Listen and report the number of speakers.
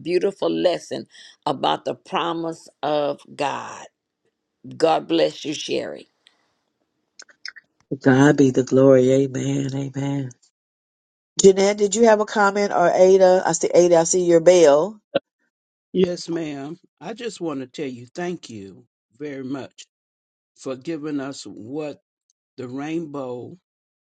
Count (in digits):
3